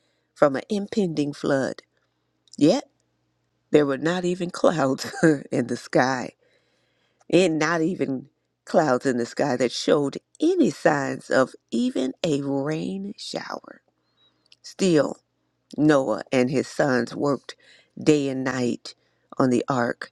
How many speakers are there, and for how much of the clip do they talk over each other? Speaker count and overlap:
1, no overlap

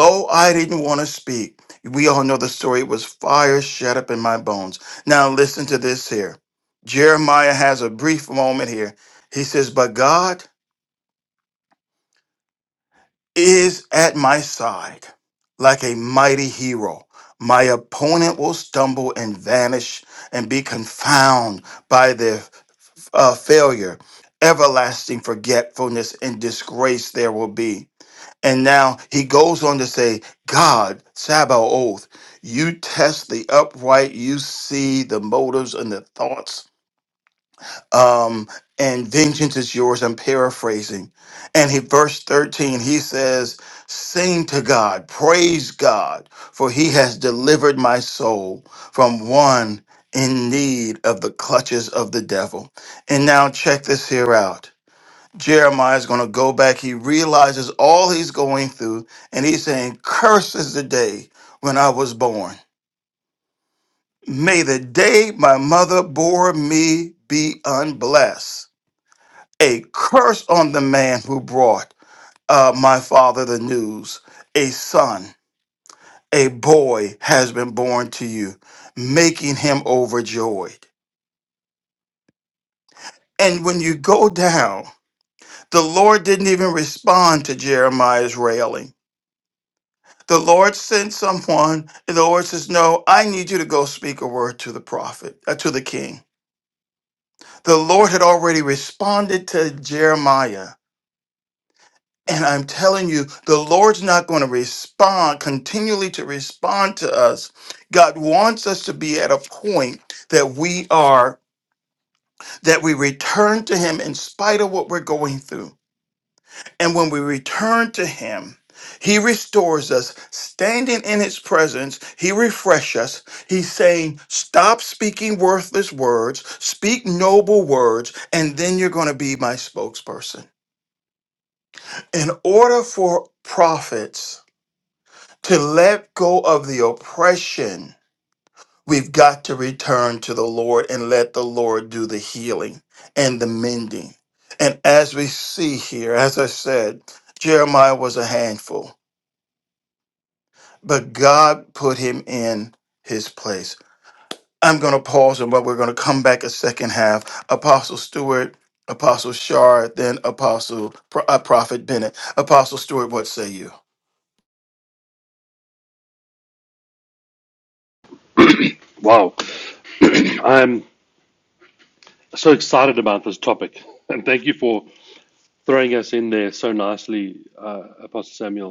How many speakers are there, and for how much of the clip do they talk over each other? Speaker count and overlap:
2, no overlap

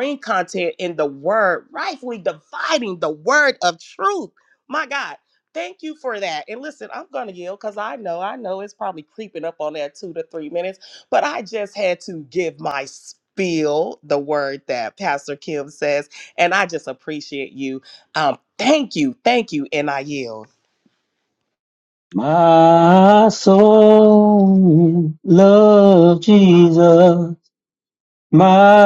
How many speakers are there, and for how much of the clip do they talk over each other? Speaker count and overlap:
2, no overlap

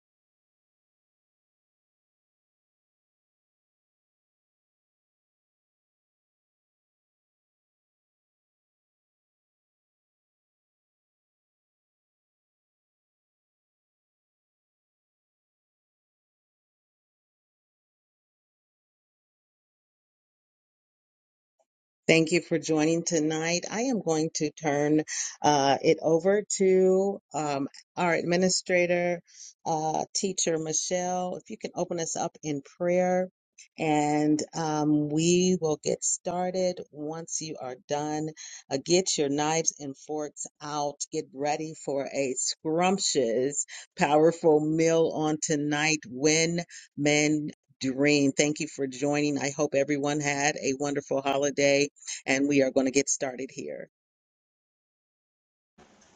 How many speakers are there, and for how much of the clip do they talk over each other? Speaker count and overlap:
1, no overlap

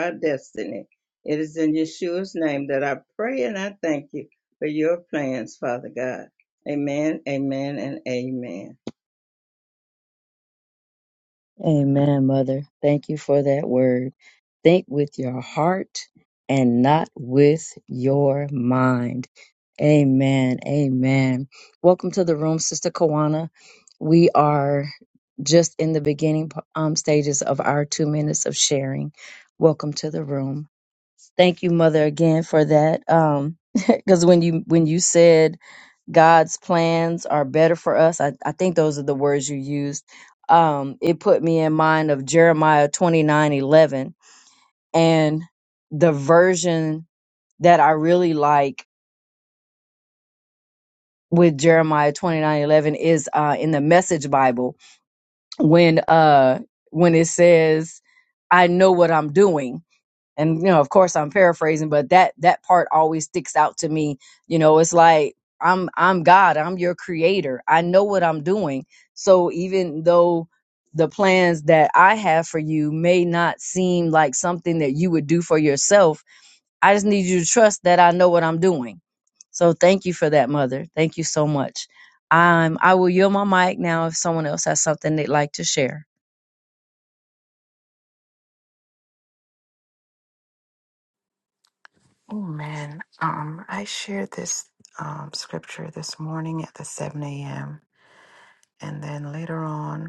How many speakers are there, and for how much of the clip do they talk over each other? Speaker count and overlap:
3, no overlap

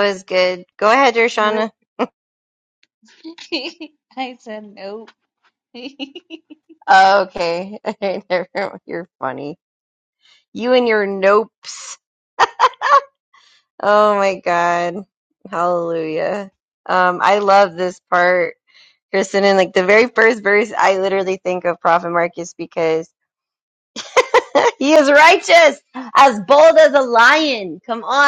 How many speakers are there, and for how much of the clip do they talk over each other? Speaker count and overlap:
2, about 1%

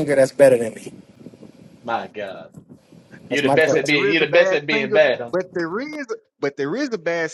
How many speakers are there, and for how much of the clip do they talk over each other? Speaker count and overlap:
3, about 27%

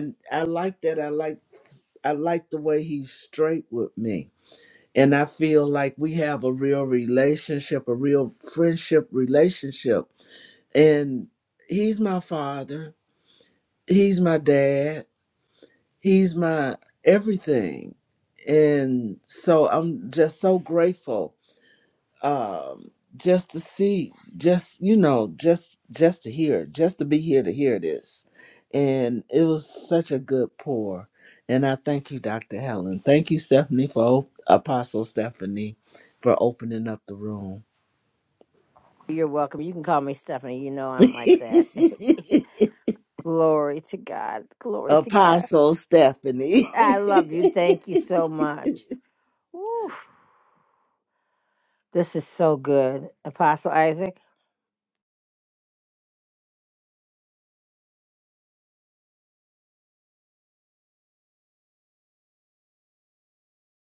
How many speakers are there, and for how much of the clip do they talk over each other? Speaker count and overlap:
2, about 1%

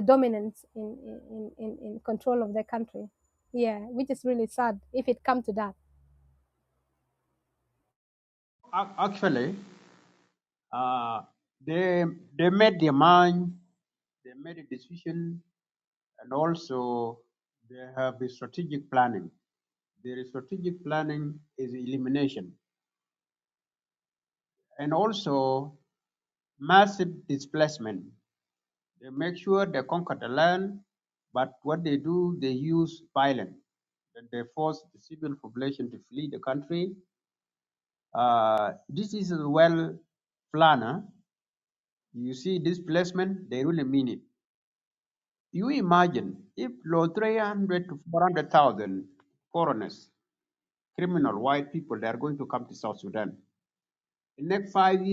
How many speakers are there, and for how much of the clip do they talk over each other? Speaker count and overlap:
2, no overlap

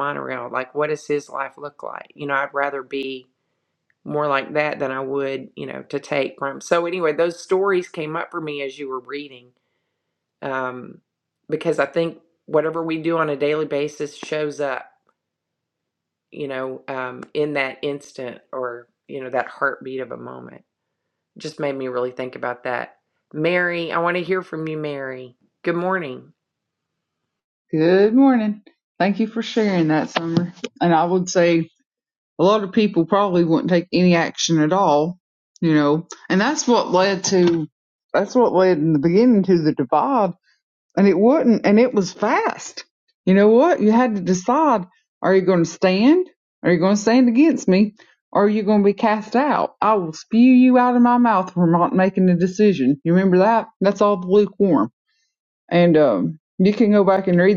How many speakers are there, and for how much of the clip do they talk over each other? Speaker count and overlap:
2, no overlap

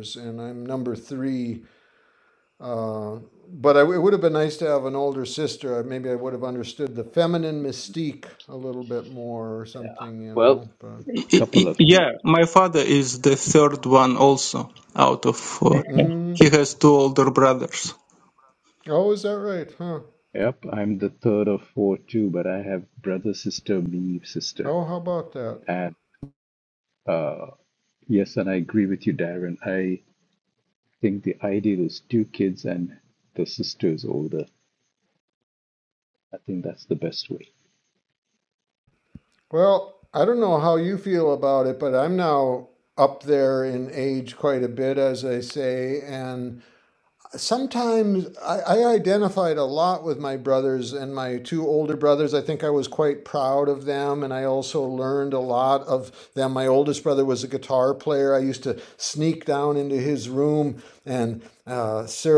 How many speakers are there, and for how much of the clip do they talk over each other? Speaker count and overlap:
3, about 2%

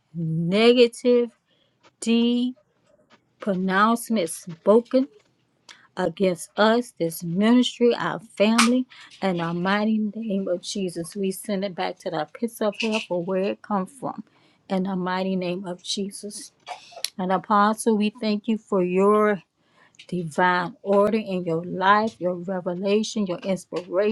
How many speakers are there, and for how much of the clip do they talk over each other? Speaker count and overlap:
1, no overlap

